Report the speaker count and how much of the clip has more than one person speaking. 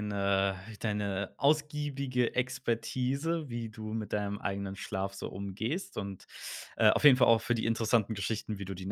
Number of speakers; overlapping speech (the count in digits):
1, no overlap